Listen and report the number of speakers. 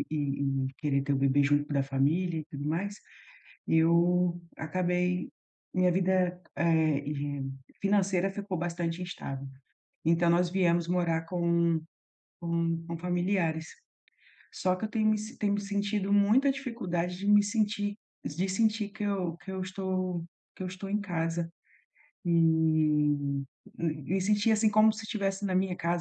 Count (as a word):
one